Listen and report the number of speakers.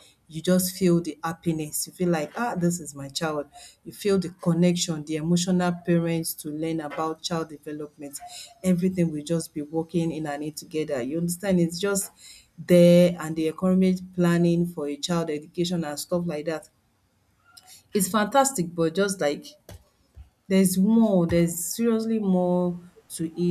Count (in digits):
1